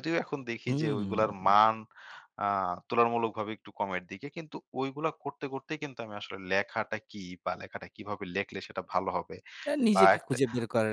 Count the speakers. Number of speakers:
2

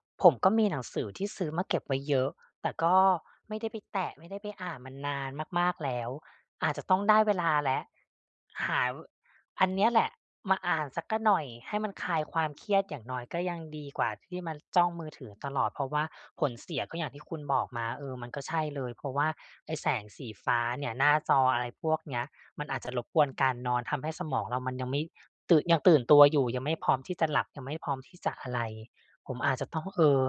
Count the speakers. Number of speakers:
1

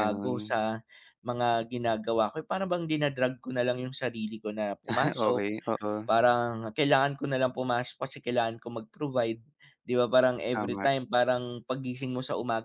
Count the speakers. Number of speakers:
2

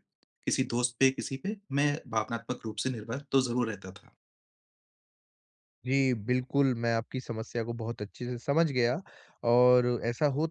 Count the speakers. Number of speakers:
2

